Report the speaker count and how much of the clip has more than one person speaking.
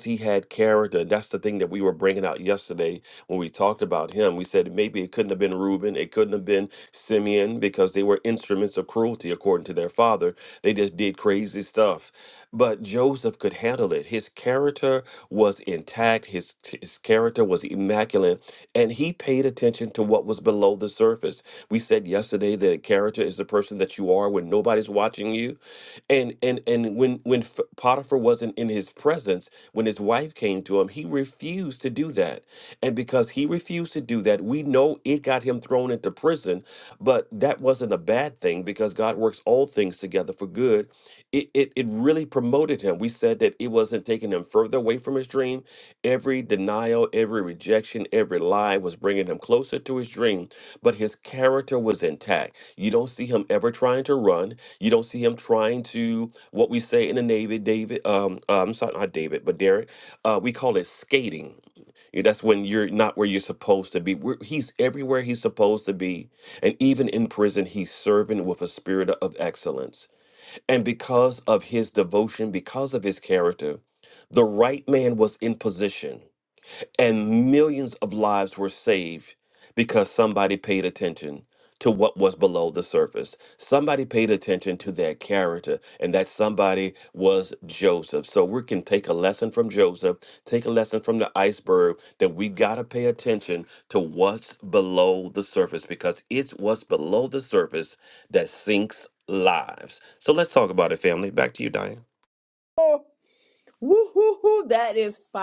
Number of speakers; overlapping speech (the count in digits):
2, no overlap